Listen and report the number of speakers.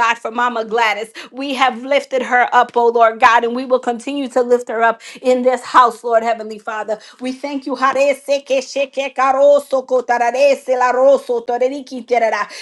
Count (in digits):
1